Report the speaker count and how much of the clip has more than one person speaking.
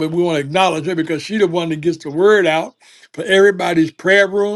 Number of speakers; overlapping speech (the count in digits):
1, no overlap